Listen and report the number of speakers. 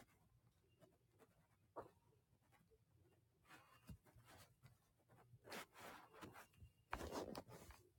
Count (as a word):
zero